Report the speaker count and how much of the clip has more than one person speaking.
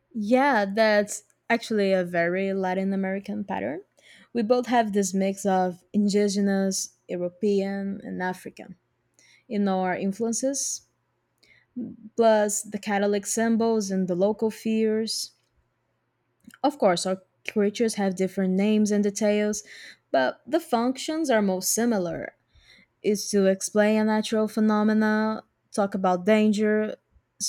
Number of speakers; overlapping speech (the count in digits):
1, no overlap